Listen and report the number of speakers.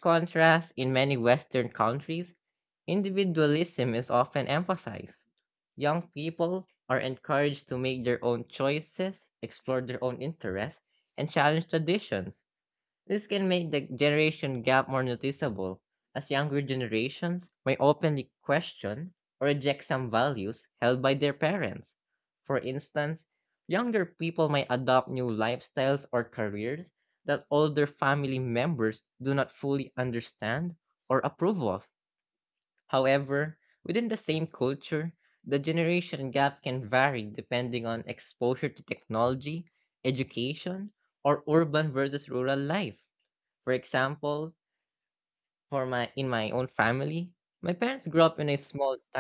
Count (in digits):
1